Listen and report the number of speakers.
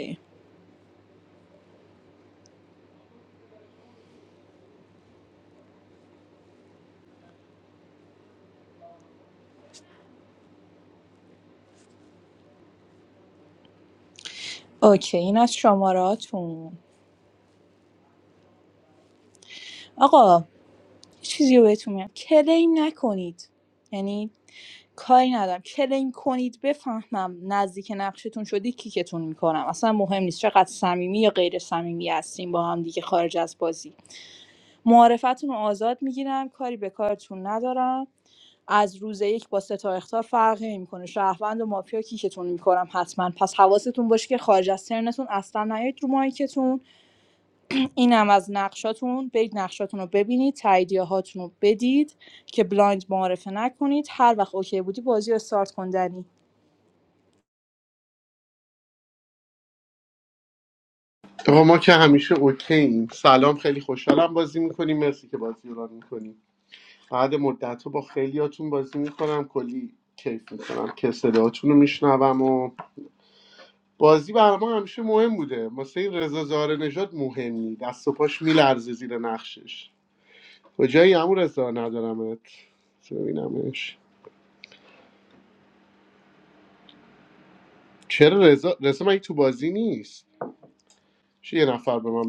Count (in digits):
2